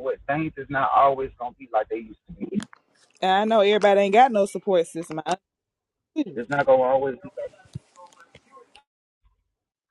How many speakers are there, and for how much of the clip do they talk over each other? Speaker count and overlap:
two, under 1%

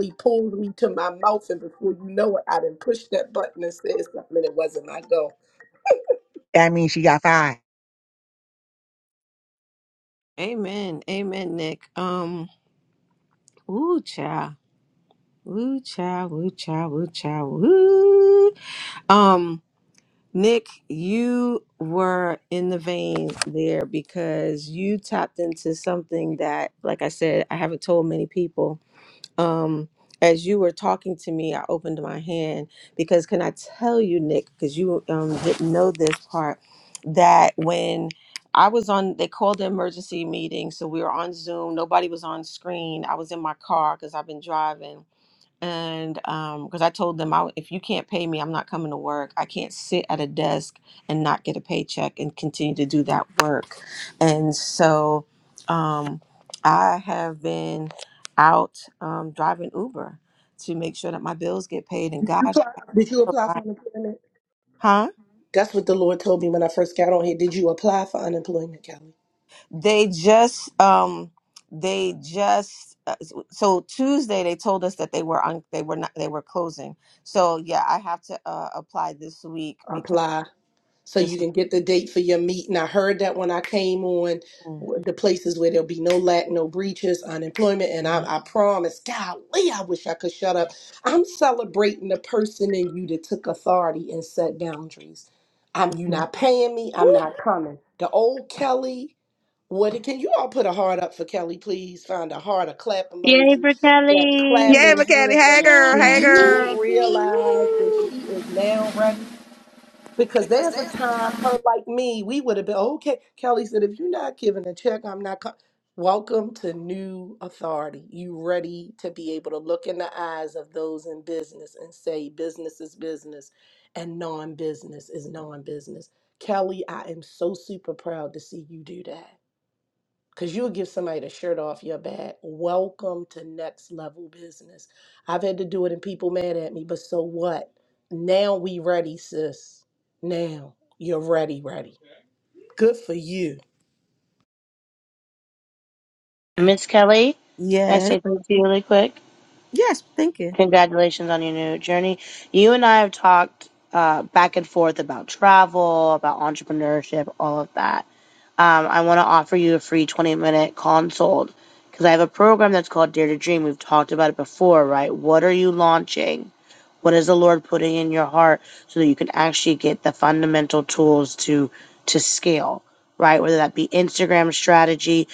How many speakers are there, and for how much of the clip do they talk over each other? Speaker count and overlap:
four, about 4%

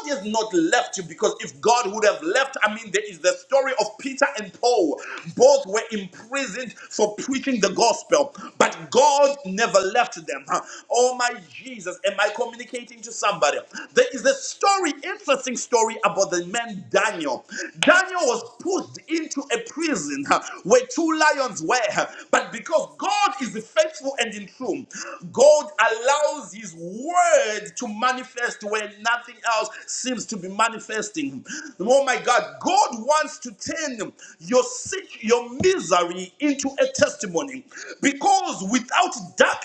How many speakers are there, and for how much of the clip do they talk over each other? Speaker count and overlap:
one, no overlap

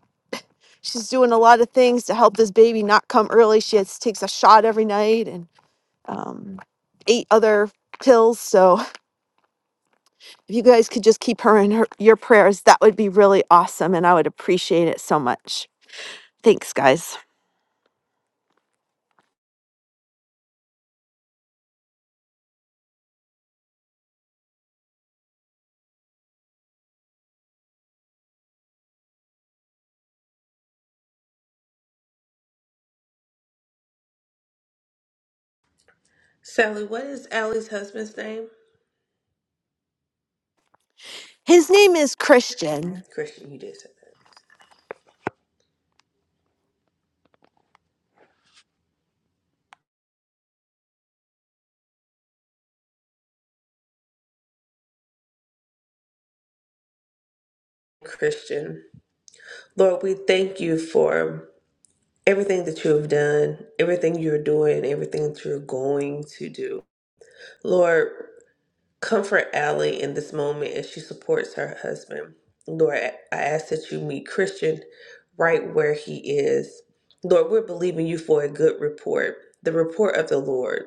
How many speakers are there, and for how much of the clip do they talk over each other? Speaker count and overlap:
two, no overlap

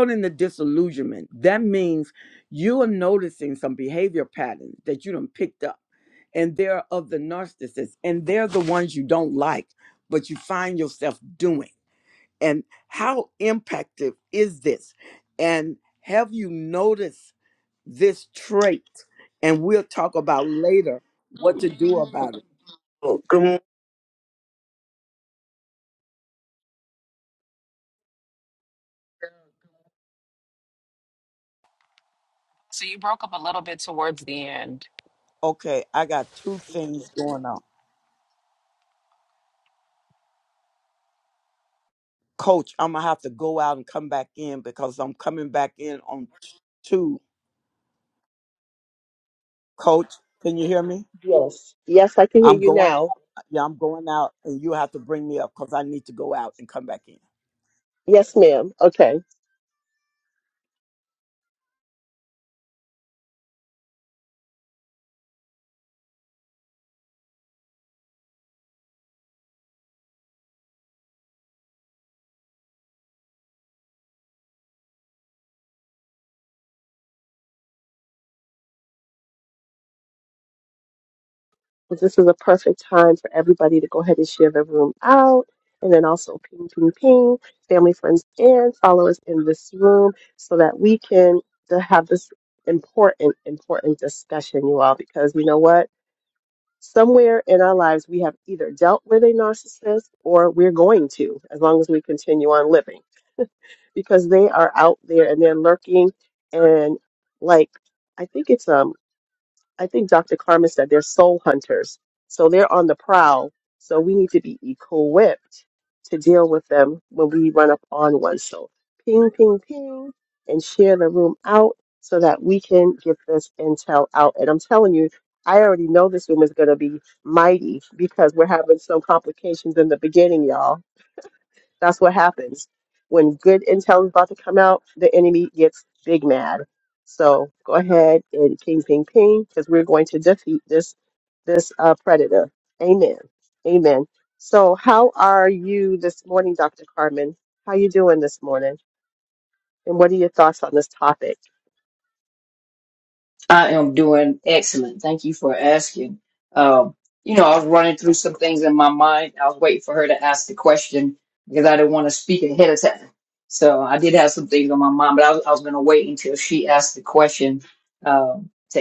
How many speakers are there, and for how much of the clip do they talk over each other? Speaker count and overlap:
four, under 1%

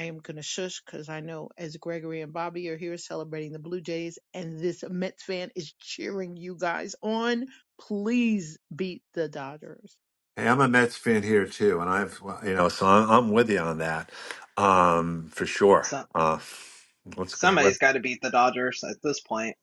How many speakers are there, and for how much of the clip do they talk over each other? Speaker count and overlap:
three, about 2%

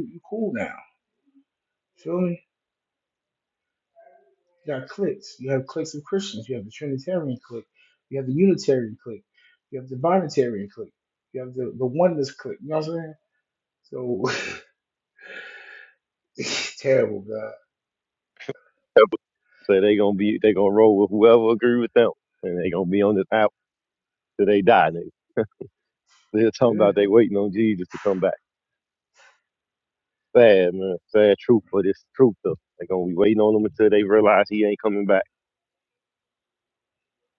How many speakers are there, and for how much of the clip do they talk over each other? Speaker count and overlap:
two, about 1%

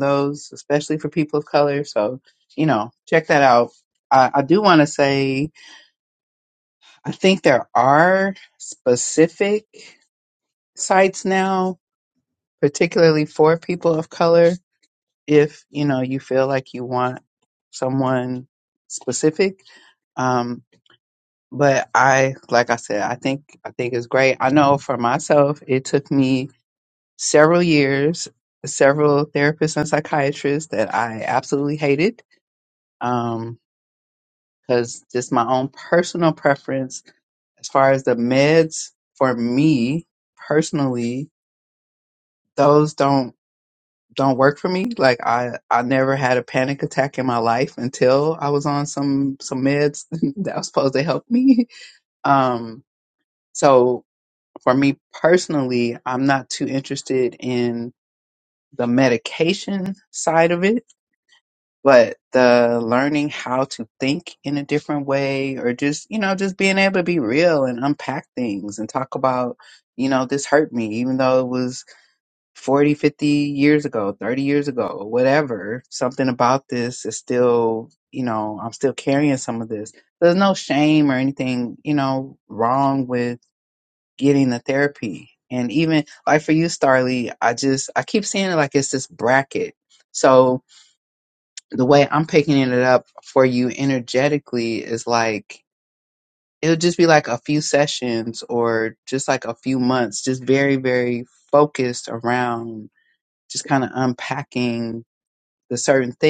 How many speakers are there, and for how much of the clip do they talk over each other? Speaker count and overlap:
one, no overlap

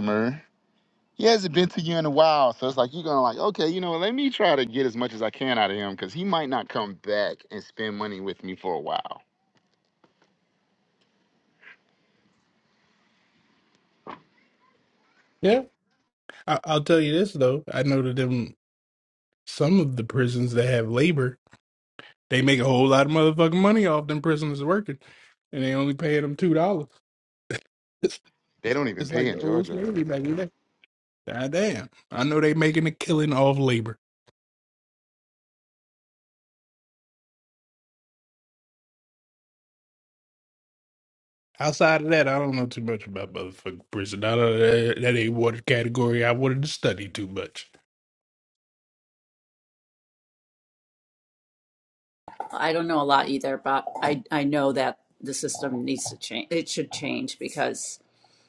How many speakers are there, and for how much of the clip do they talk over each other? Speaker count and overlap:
three, about 2%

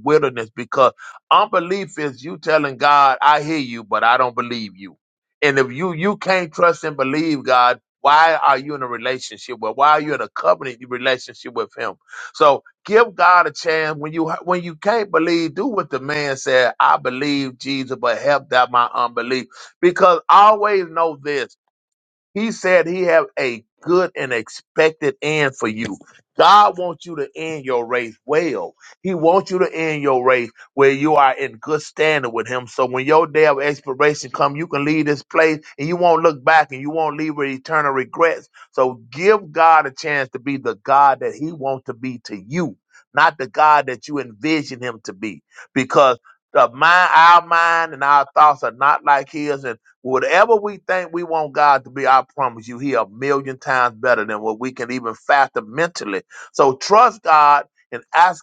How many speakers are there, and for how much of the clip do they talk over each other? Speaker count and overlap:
one, no overlap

